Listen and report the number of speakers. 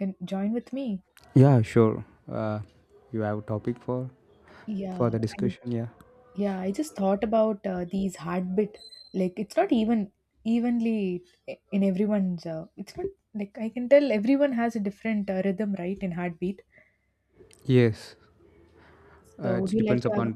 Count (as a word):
two